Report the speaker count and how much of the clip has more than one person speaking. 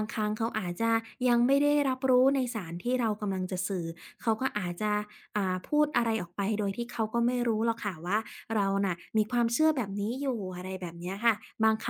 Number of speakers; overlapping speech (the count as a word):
one, no overlap